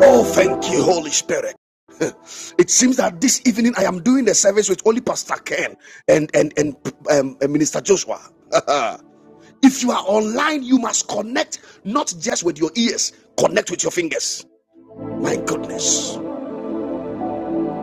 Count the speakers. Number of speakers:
1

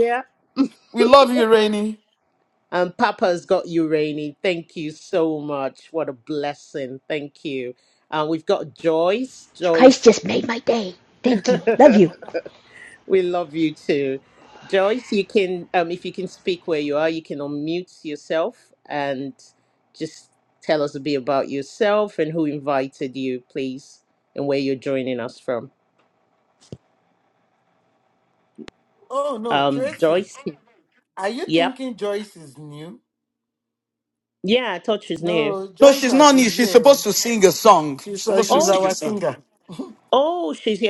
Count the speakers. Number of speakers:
4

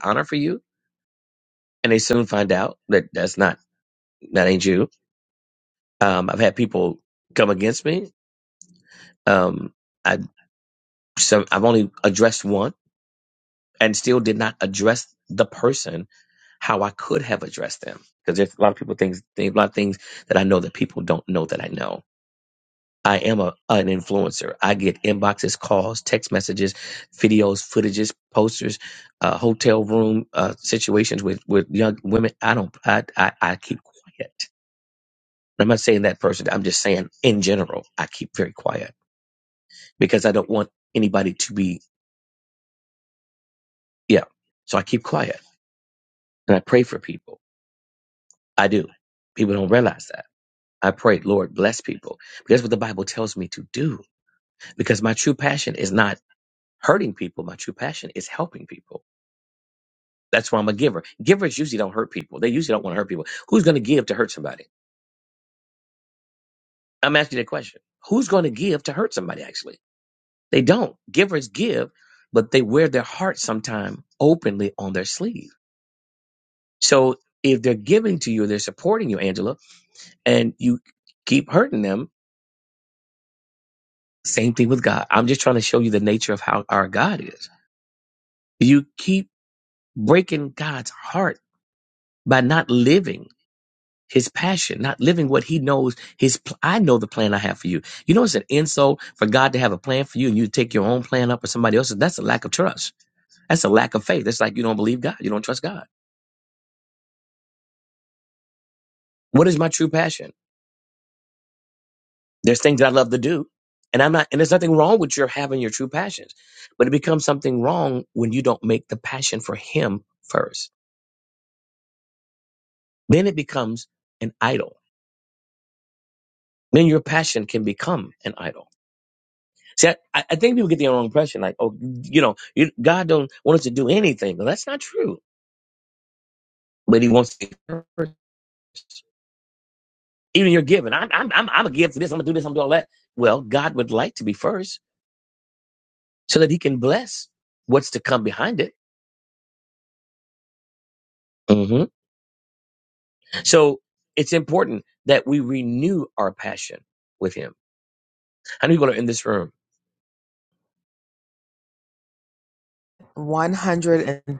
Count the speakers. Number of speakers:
2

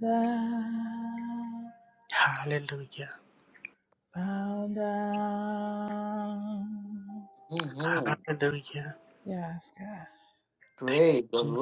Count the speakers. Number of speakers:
3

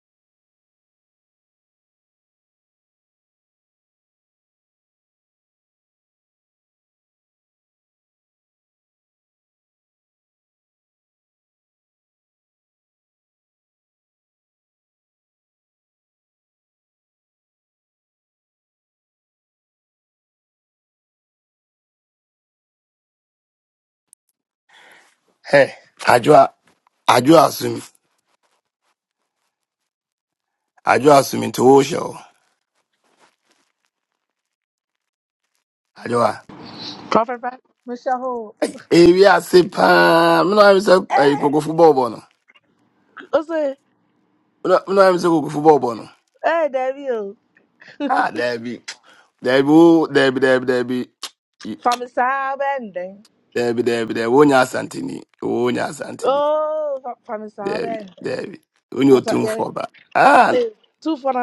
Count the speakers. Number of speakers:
2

